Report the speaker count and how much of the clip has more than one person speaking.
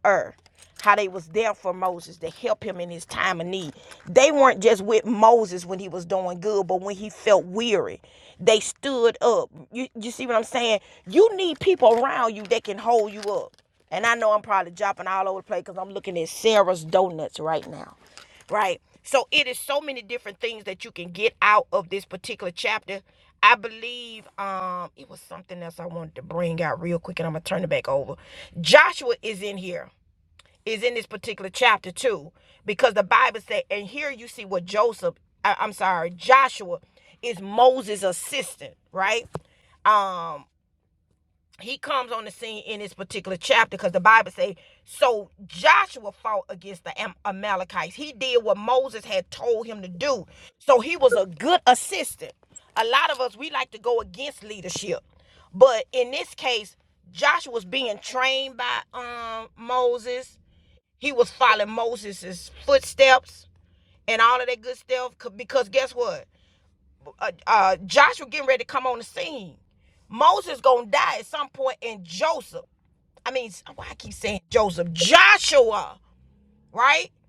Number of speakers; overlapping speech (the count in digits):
1, no overlap